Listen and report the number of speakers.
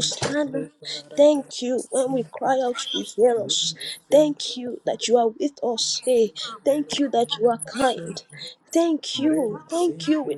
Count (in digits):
2